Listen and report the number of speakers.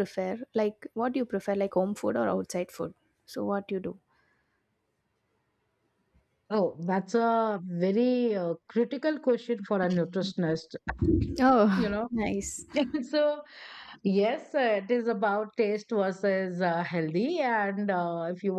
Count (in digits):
2